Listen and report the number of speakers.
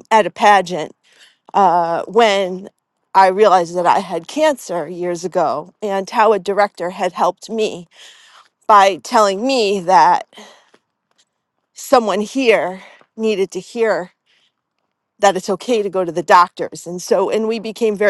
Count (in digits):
1